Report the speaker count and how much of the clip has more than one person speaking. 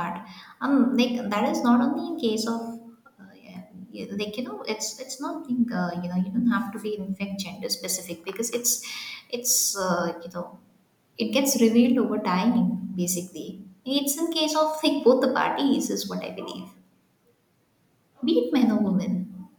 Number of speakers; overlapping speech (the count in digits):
1, no overlap